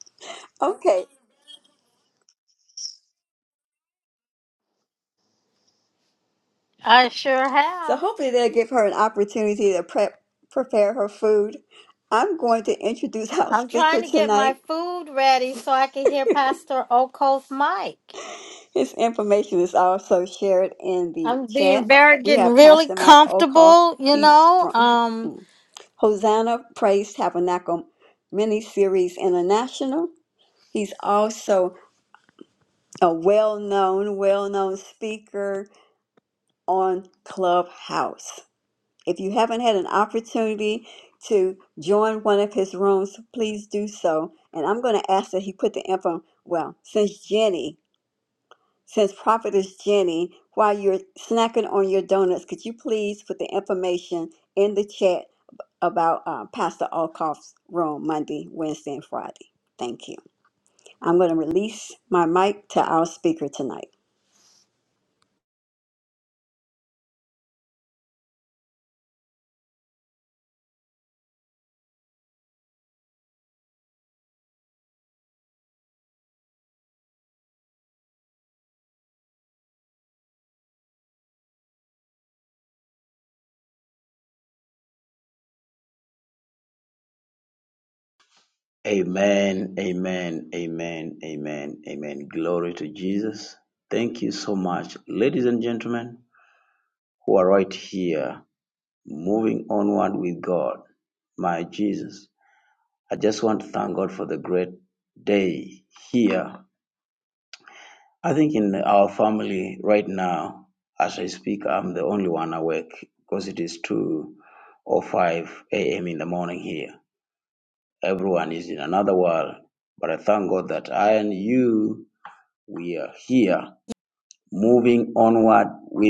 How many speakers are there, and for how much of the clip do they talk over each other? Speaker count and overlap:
3, about 3%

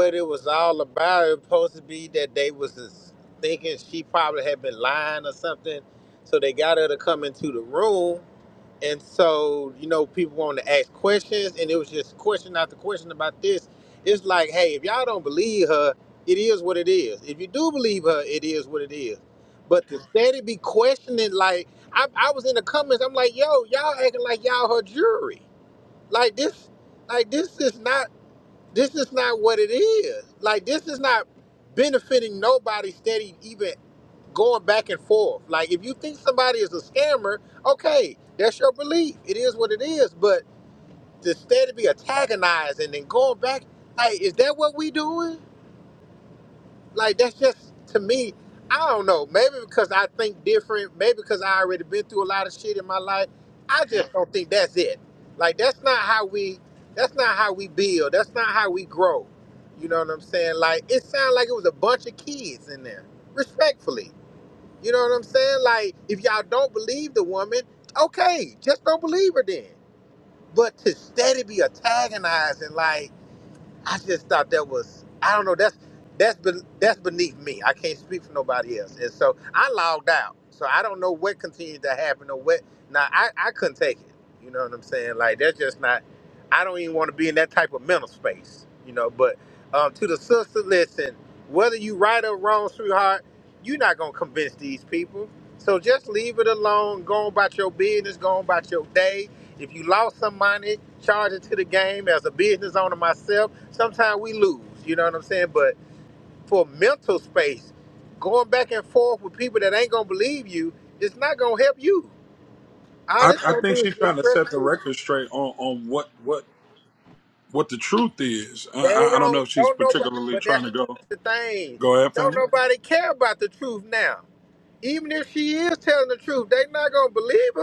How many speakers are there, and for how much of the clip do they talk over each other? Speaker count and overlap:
2, about 3%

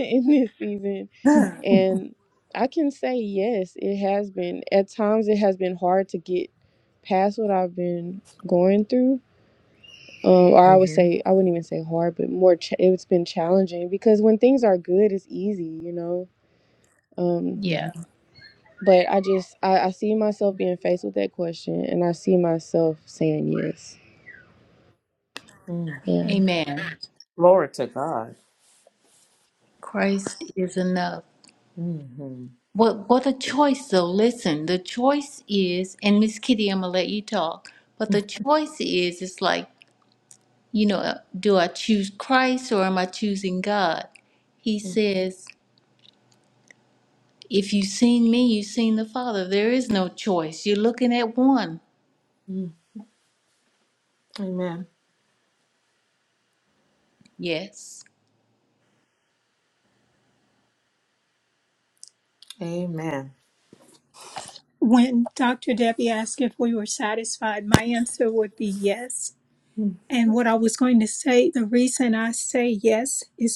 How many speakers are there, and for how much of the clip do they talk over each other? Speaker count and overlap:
4, about 1%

